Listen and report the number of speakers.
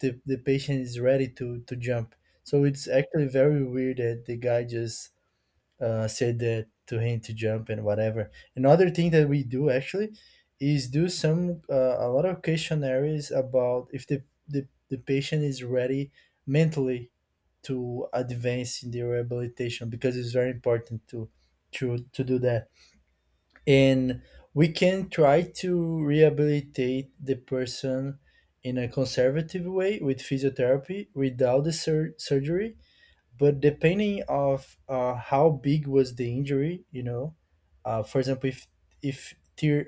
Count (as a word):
one